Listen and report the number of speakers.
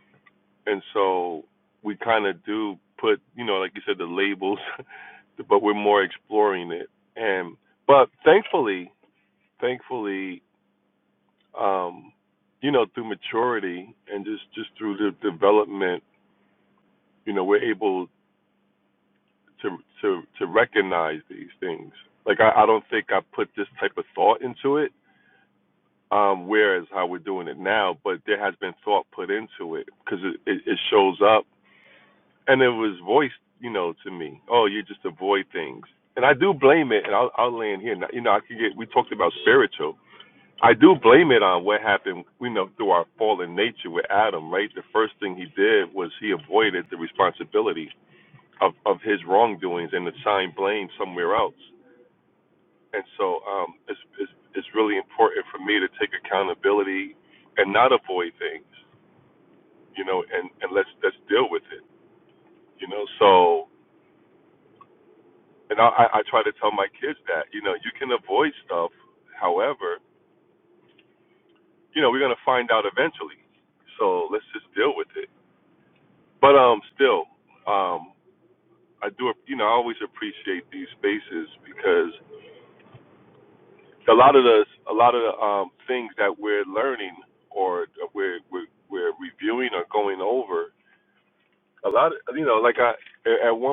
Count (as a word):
one